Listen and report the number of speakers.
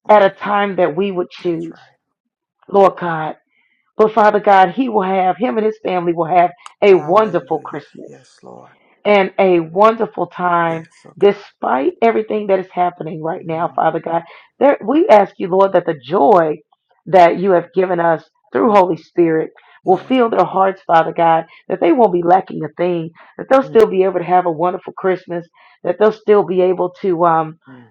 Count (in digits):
2